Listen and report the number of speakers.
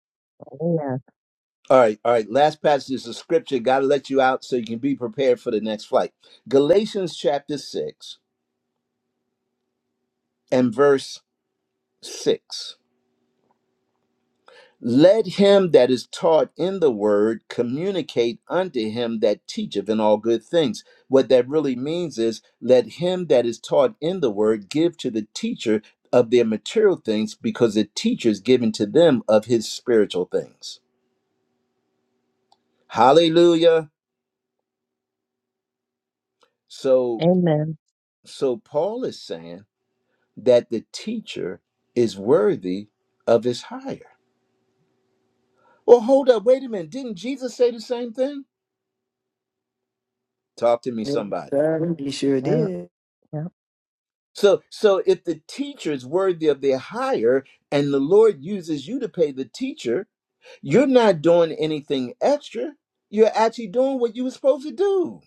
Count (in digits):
3